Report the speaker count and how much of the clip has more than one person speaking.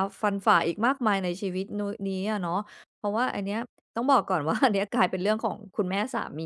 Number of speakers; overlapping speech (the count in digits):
1, no overlap